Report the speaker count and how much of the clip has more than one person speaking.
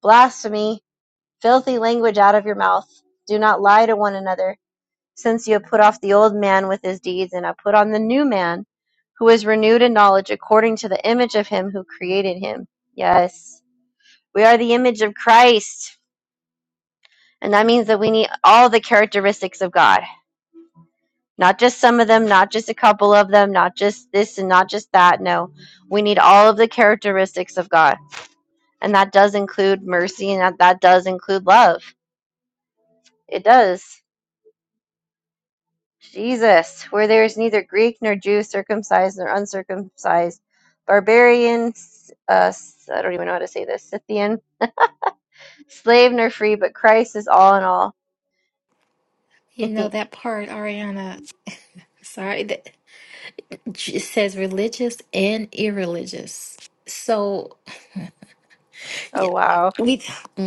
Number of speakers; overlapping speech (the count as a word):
two, under 1%